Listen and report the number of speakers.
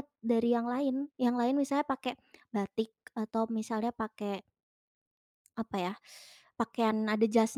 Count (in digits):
1